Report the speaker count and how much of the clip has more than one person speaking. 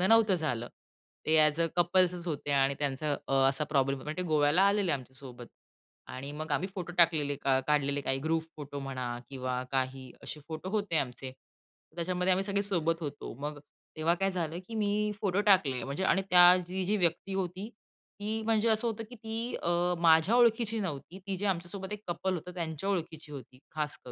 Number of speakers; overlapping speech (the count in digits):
1, no overlap